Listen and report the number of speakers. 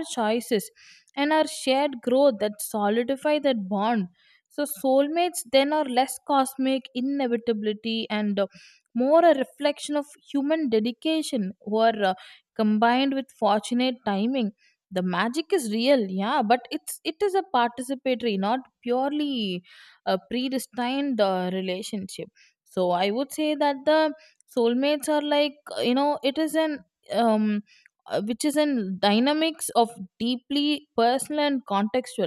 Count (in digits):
1